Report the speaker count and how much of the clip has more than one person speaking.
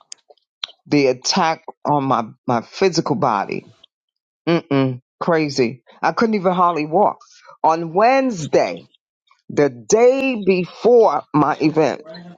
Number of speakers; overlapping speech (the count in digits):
1, no overlap